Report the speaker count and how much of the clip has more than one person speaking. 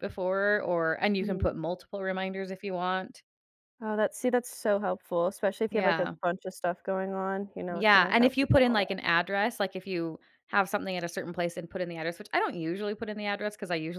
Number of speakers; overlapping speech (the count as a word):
two, about 14%